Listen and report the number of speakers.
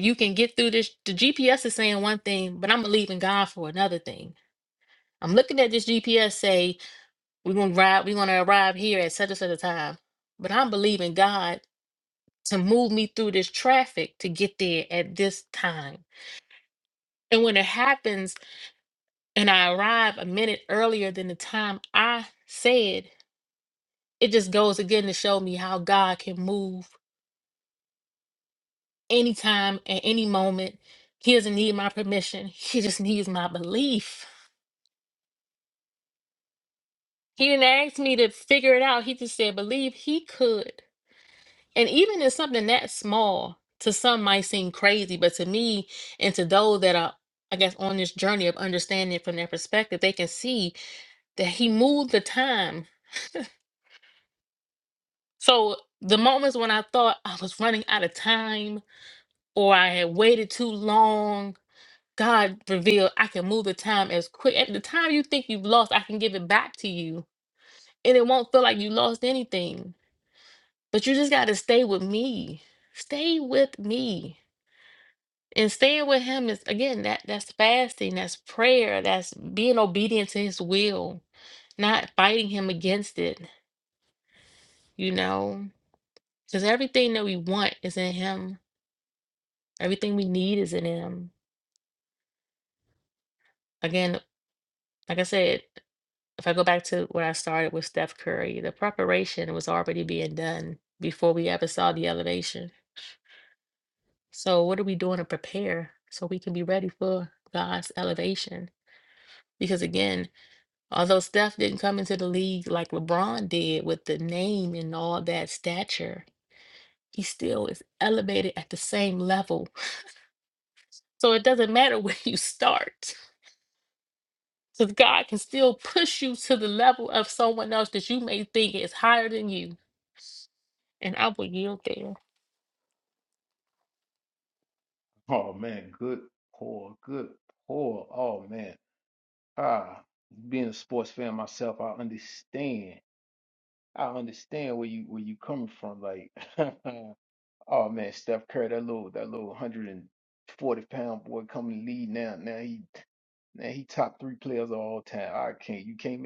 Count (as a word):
two